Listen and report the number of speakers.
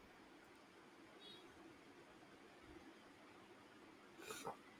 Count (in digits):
0